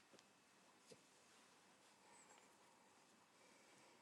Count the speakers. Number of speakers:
zero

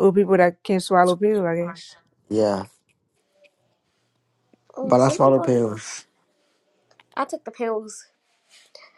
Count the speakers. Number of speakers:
three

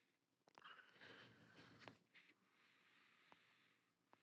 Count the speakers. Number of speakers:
zero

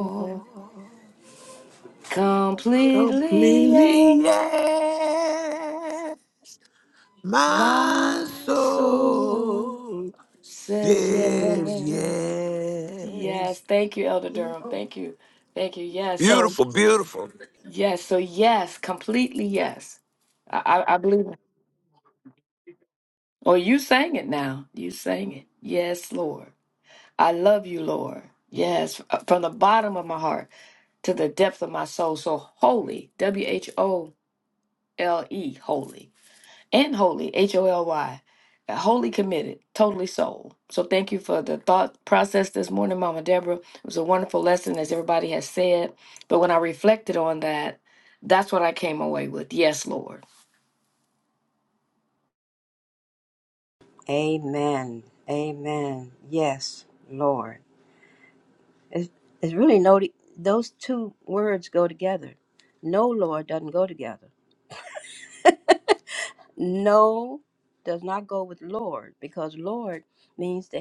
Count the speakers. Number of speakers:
three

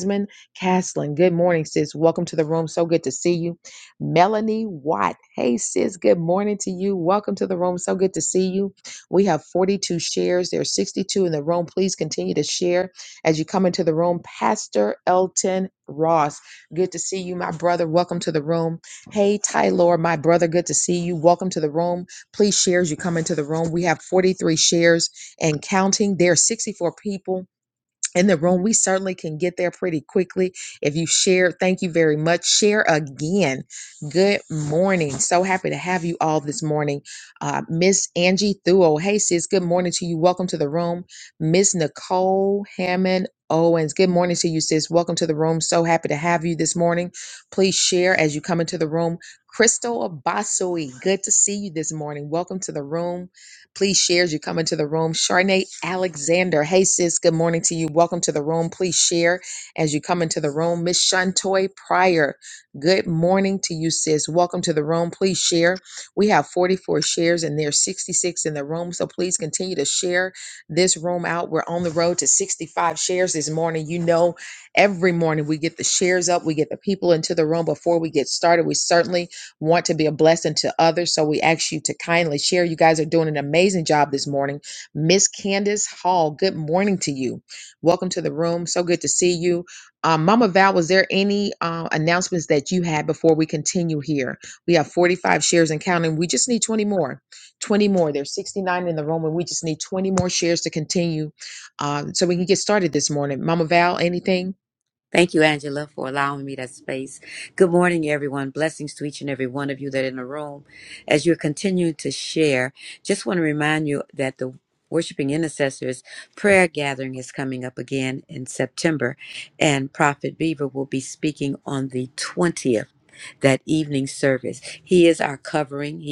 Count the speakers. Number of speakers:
two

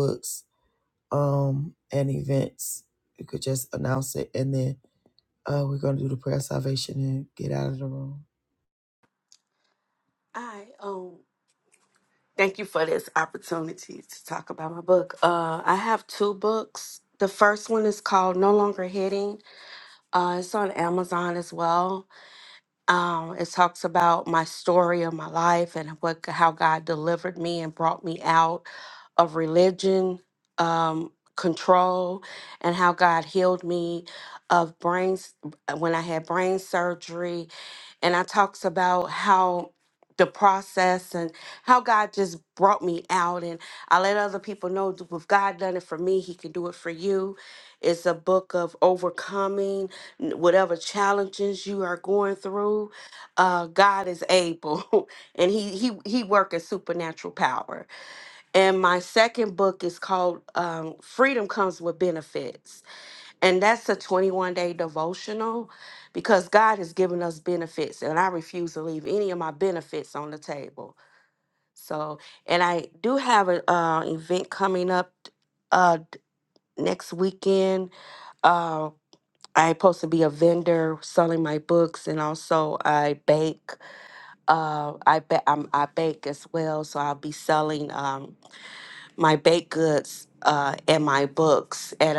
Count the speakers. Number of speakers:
two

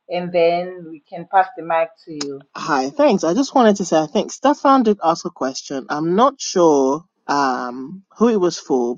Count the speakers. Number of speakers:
two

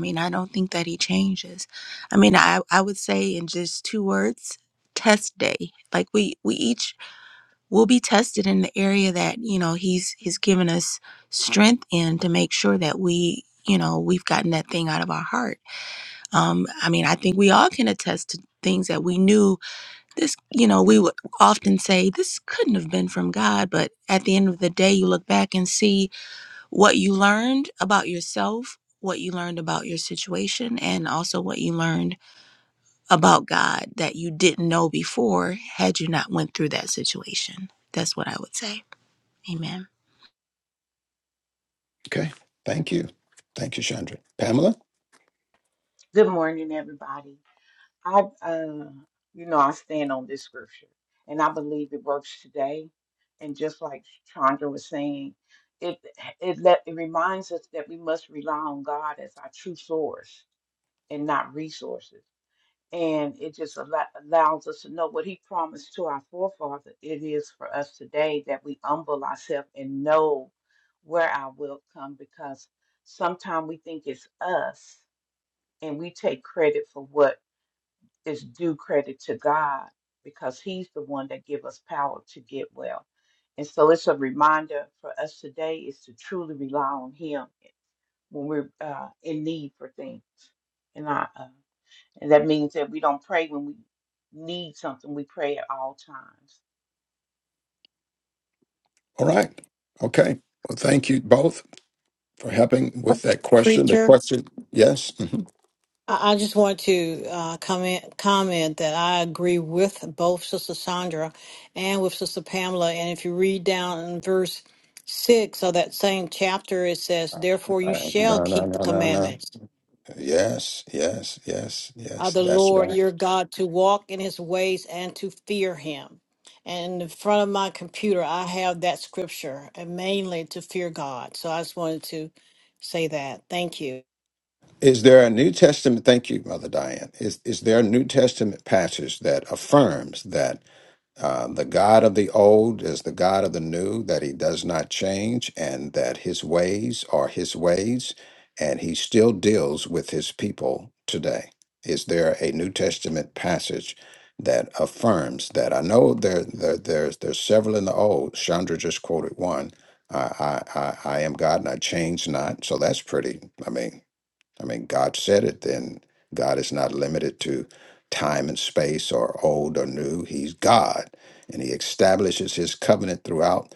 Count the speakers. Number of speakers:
four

